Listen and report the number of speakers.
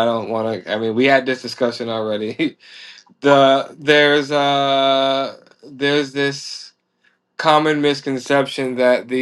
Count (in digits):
1